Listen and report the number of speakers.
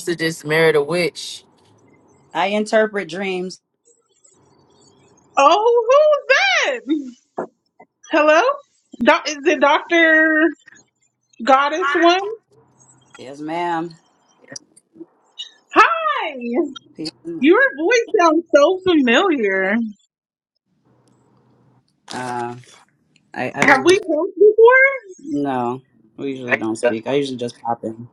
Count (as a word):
three